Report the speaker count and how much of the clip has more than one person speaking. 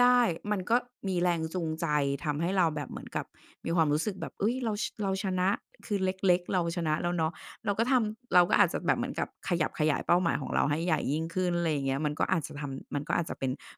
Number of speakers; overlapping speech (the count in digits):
1, no overlap